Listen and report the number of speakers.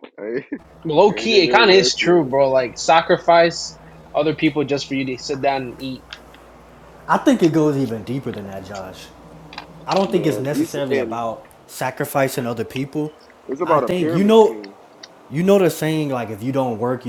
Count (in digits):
3